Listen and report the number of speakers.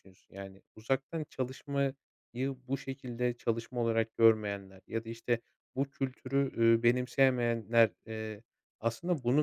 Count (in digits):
1